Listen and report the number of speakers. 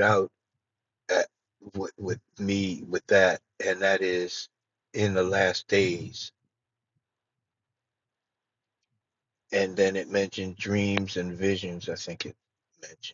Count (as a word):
one